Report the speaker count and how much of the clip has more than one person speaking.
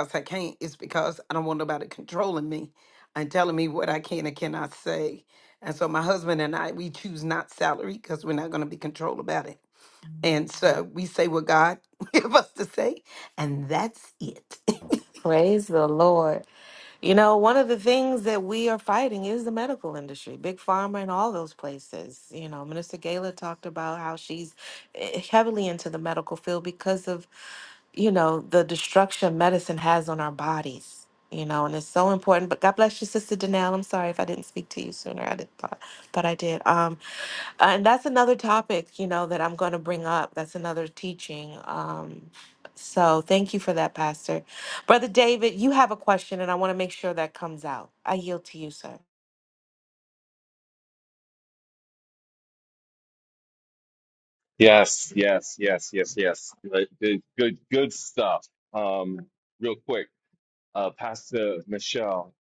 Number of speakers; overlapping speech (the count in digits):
3, no overlap